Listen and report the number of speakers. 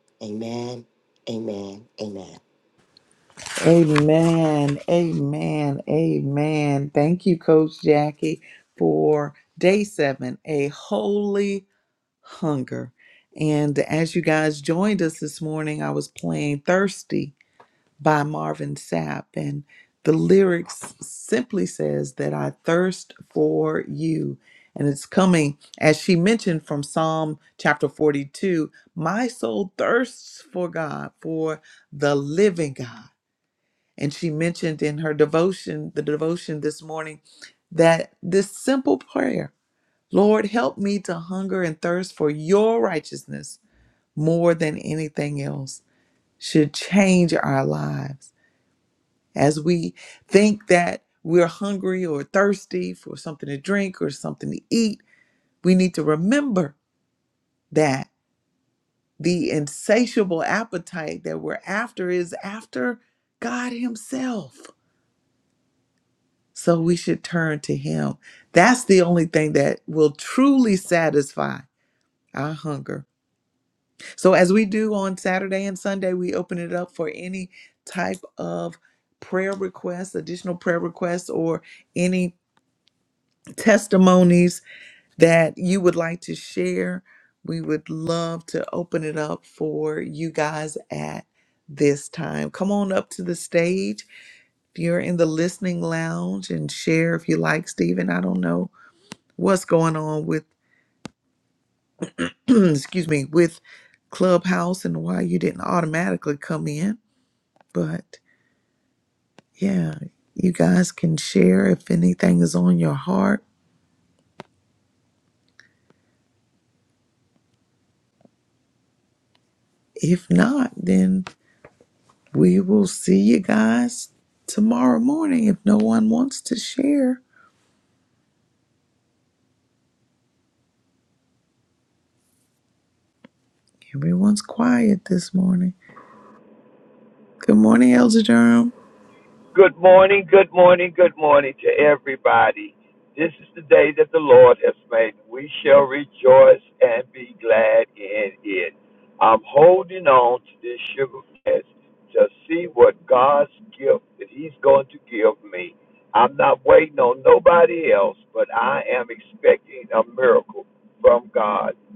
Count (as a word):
three